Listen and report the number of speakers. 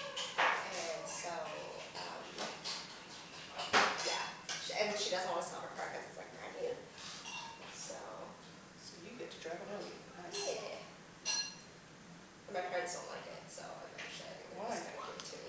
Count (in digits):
2